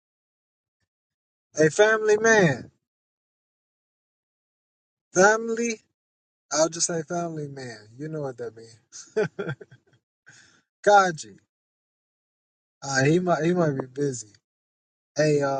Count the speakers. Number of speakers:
one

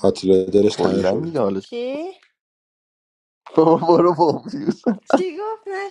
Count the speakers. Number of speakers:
three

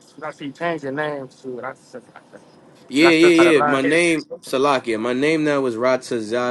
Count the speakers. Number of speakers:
two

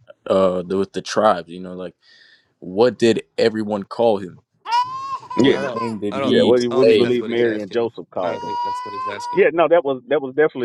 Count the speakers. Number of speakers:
three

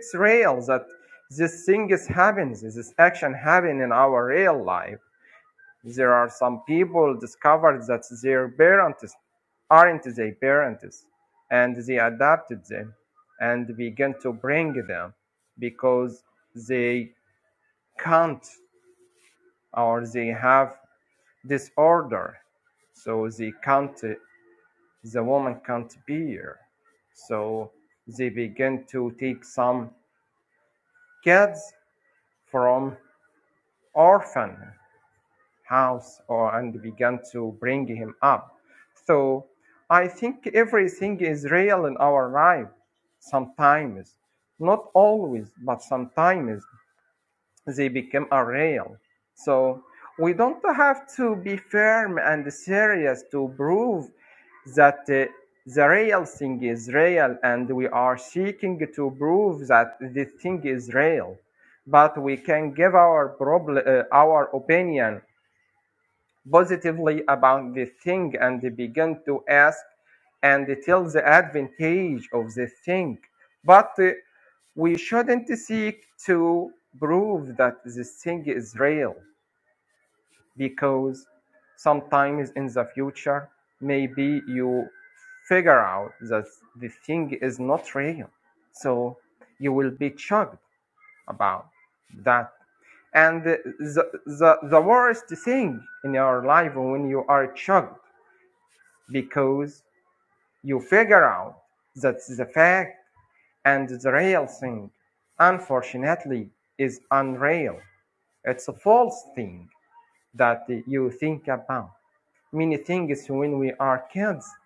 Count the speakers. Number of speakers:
one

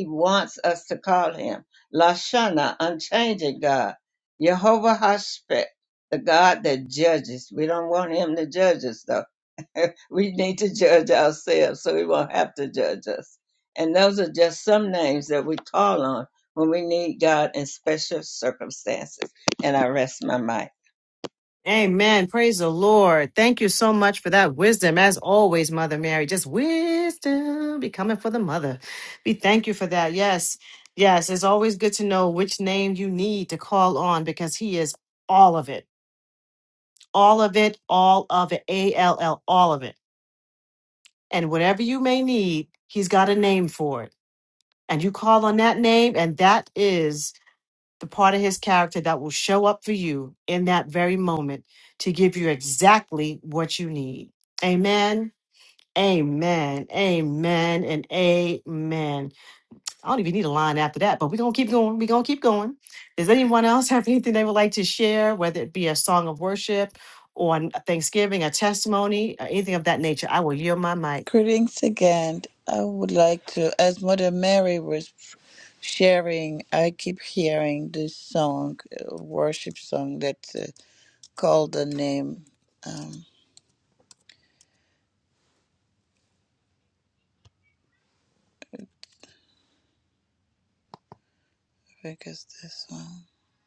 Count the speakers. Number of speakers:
three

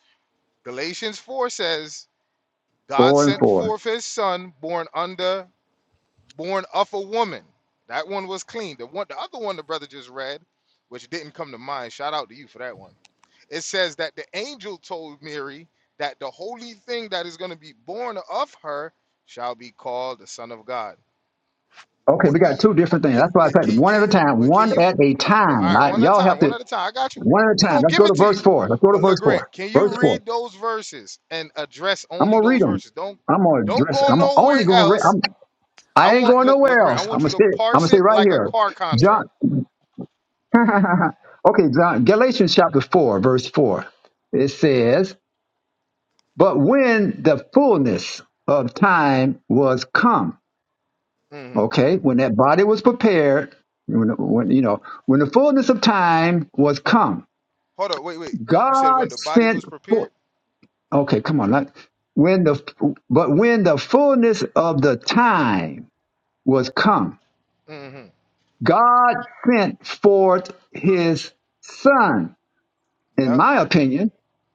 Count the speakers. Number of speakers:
two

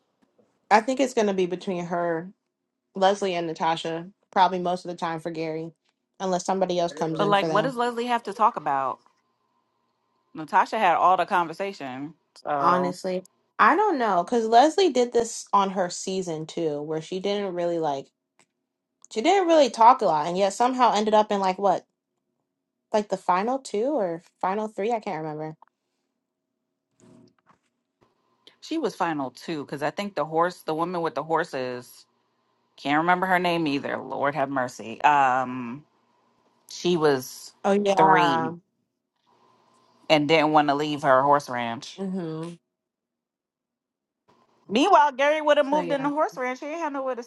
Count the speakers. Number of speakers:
two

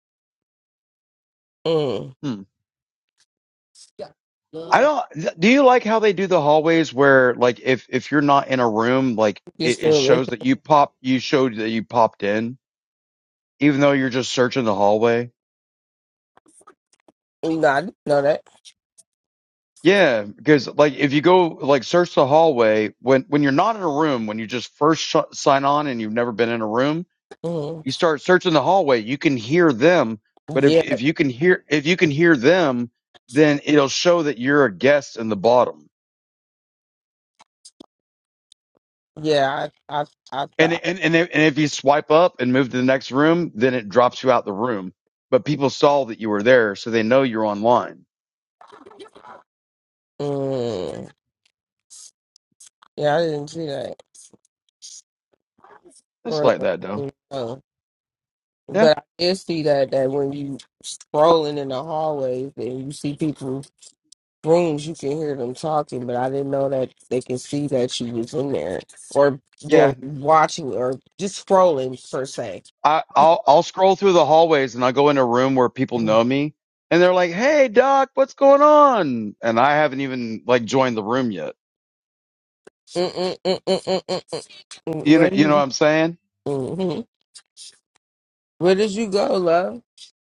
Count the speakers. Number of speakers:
two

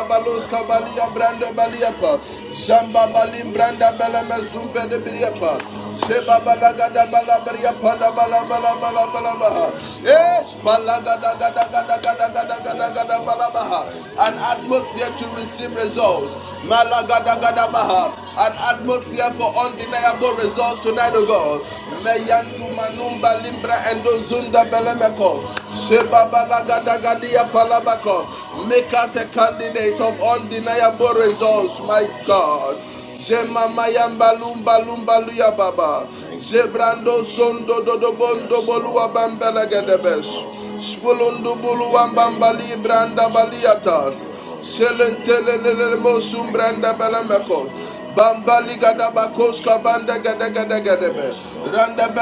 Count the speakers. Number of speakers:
two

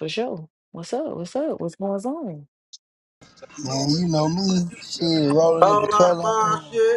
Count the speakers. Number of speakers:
three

